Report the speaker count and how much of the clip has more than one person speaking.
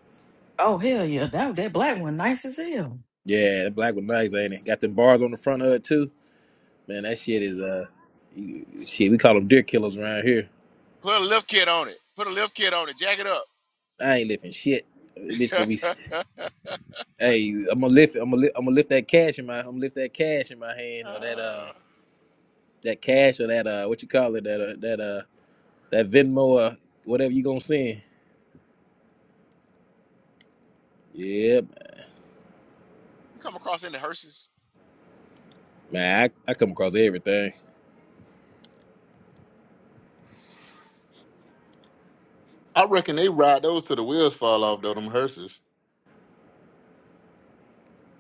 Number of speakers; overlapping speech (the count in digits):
4, about 1%